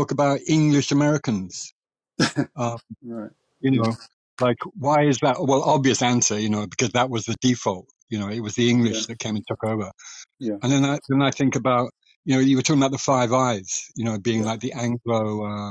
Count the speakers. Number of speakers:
two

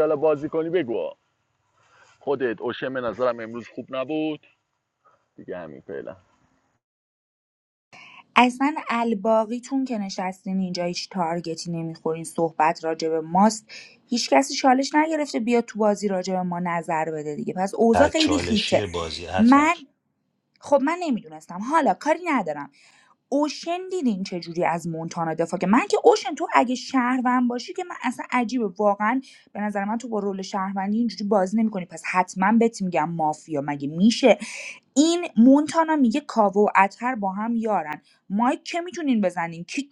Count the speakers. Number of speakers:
three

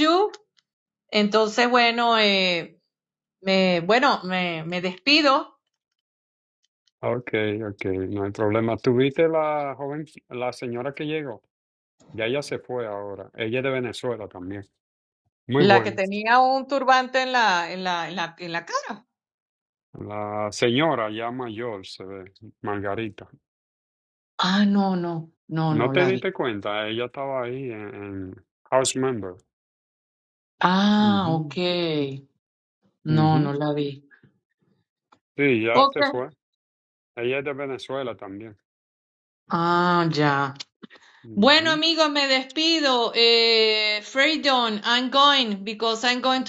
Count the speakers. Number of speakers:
two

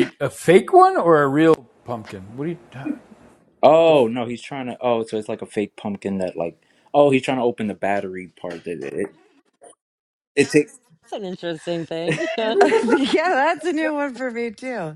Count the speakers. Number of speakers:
four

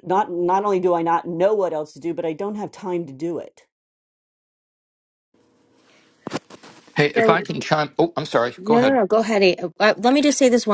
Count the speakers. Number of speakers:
three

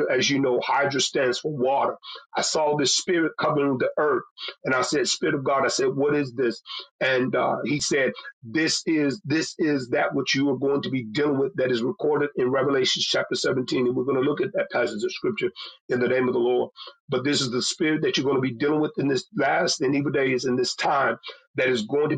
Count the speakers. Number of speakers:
one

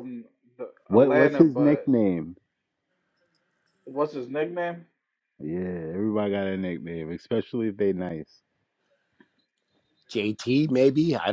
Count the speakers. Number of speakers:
three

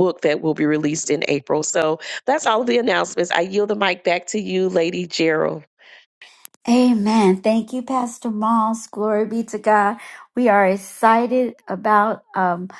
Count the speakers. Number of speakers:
two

